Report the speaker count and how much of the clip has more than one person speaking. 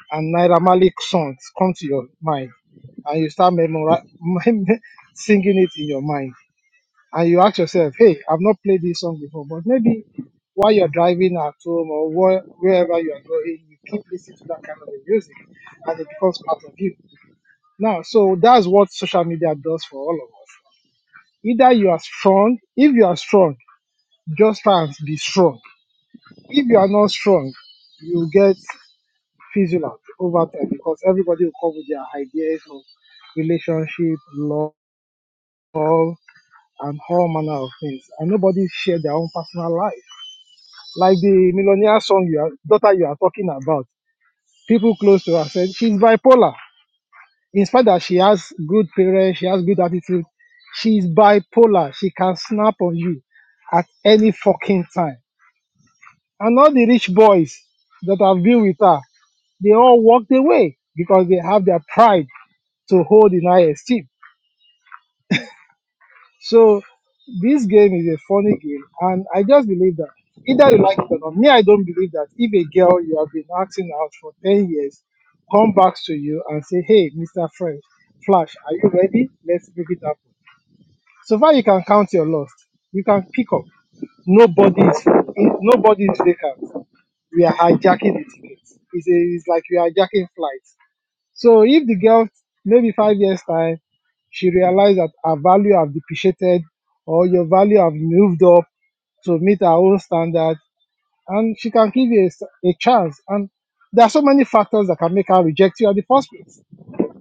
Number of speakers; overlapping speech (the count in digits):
1, no overlap